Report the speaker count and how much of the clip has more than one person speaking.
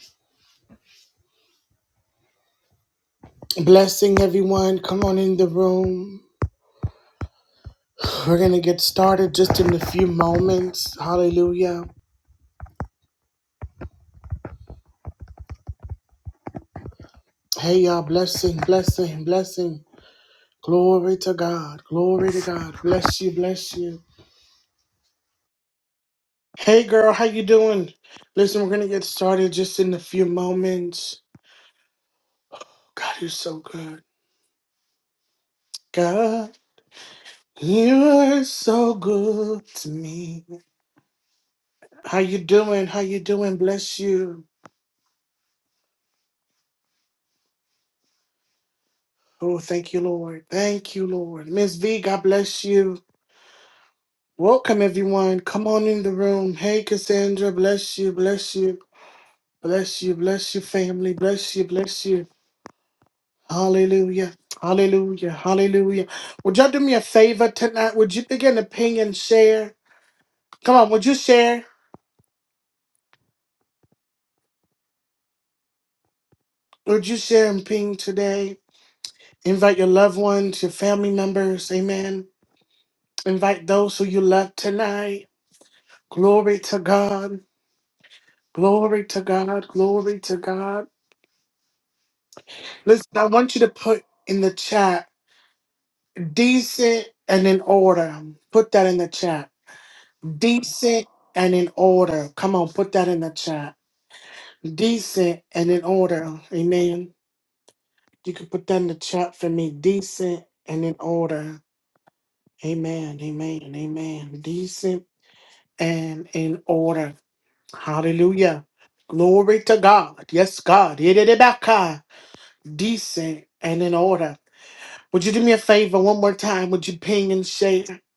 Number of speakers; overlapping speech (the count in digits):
1, no overlap